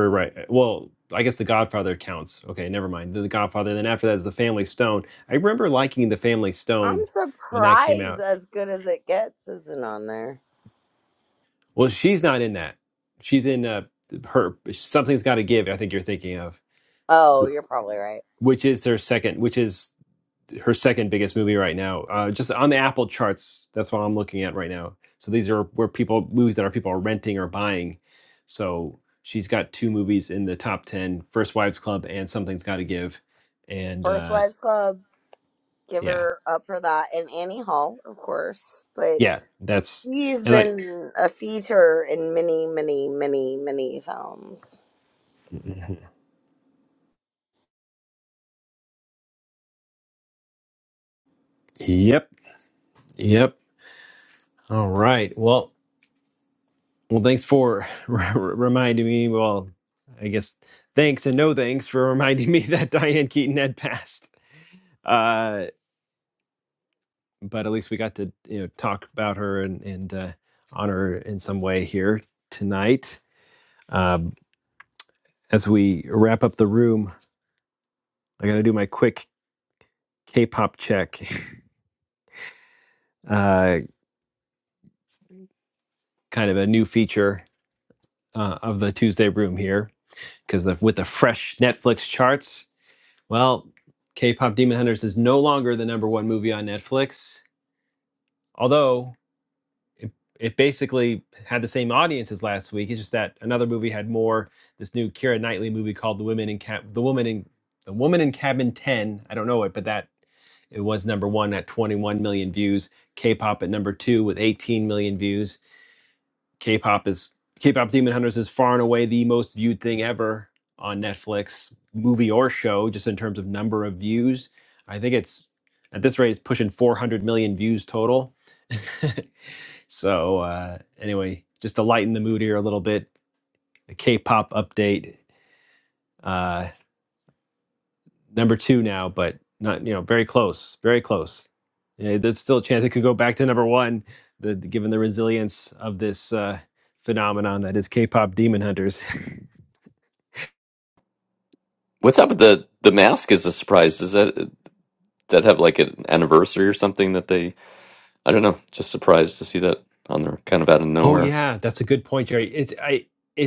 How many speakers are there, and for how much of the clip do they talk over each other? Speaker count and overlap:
3, about 1%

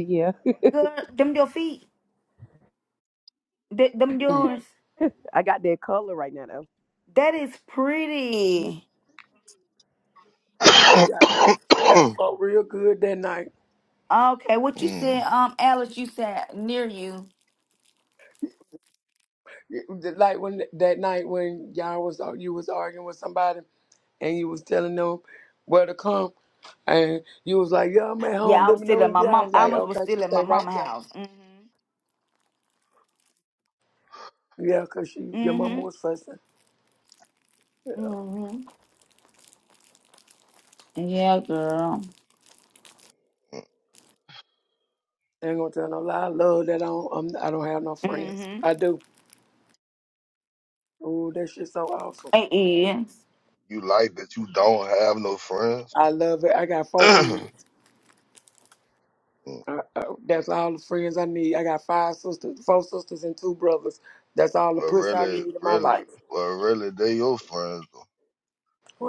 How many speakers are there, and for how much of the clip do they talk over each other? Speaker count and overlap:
4, about 8%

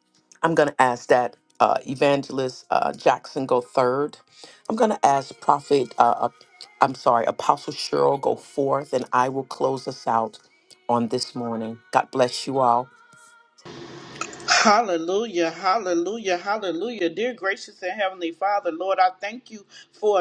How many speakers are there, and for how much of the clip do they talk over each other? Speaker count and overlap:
2, no overlap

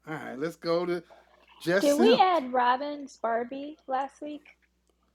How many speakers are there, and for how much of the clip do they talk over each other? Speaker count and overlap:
2, about 8%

